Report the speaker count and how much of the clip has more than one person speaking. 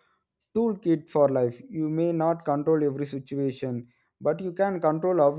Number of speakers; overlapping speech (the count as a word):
one, no overlap